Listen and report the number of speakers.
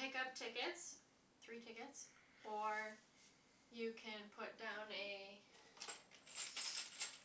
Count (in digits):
1